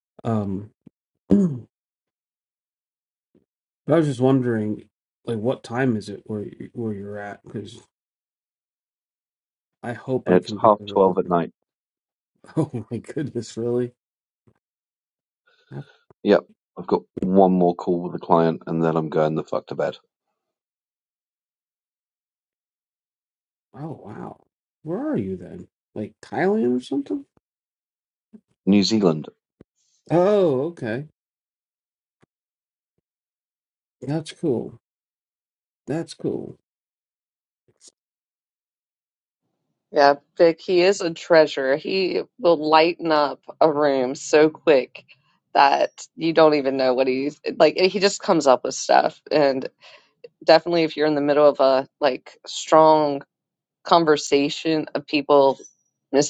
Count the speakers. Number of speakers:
3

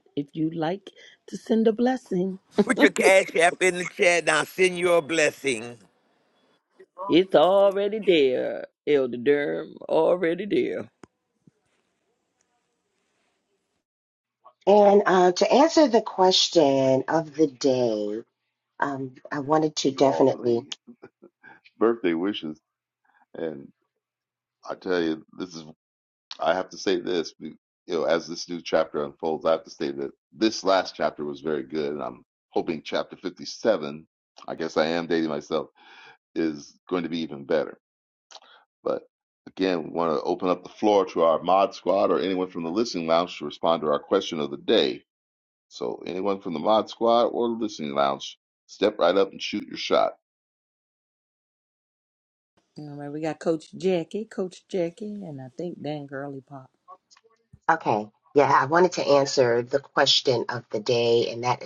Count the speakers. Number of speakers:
4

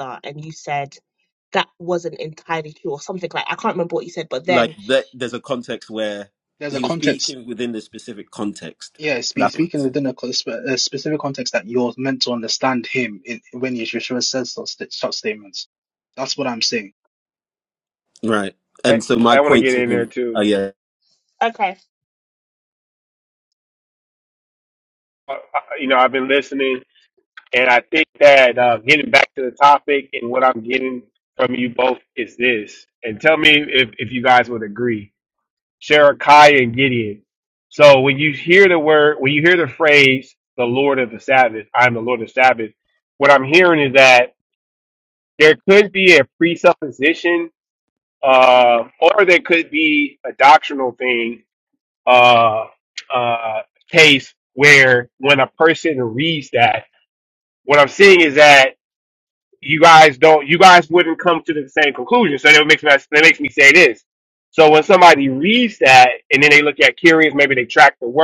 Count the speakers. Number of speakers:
4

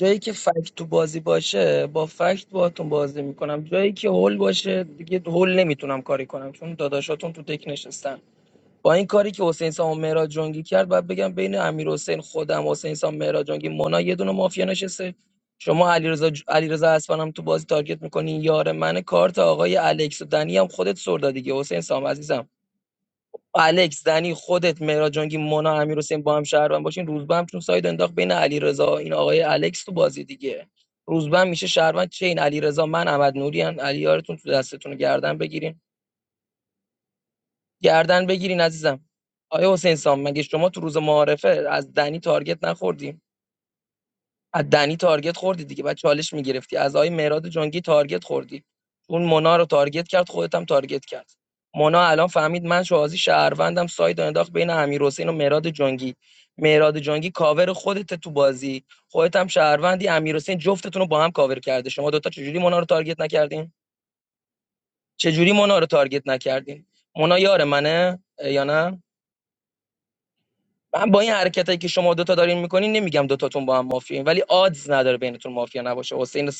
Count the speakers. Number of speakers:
1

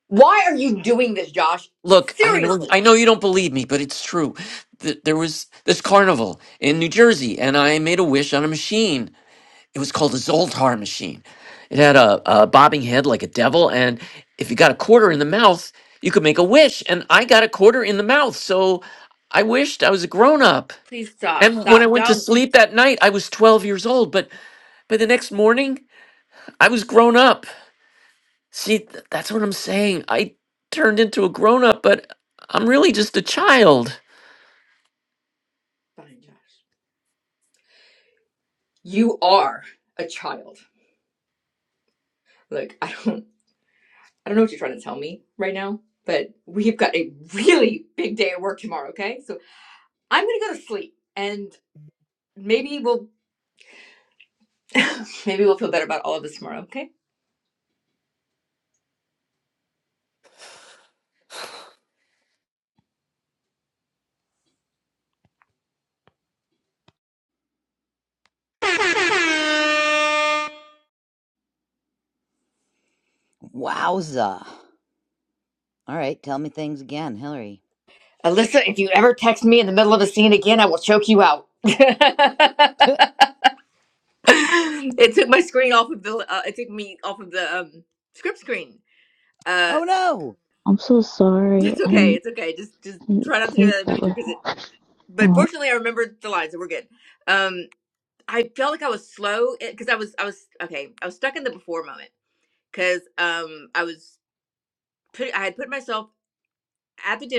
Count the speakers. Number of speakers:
4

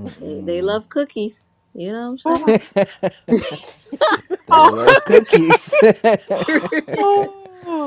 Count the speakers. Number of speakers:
3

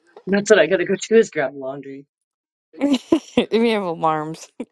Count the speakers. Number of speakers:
2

